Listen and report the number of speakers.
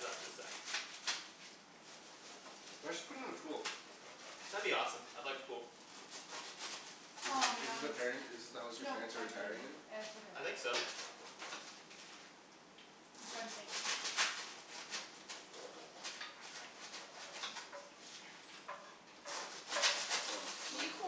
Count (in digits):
3